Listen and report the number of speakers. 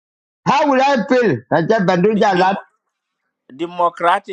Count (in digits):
2